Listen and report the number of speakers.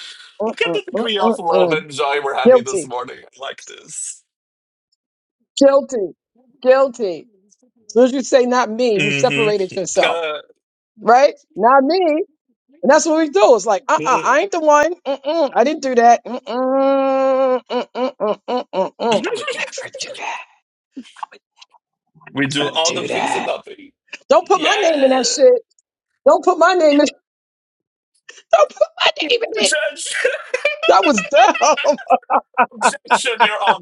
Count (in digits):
2